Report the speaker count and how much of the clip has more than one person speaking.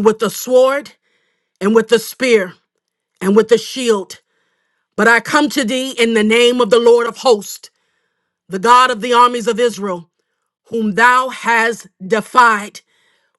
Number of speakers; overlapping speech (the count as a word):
one, no overlap